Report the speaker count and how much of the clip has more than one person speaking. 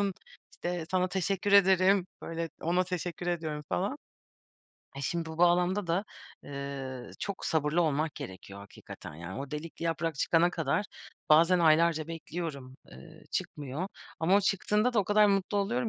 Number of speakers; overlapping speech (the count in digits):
1, no overlap